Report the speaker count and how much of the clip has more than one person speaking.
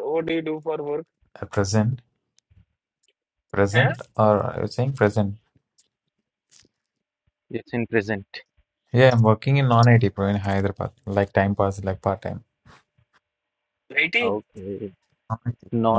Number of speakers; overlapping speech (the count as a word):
three, about 2%